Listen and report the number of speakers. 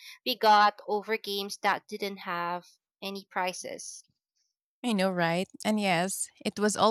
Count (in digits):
2